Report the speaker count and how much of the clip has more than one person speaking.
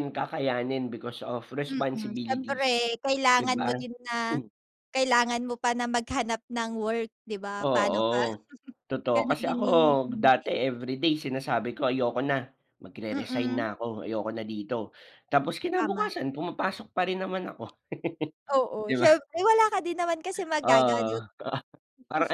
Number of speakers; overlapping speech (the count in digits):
2, about 21%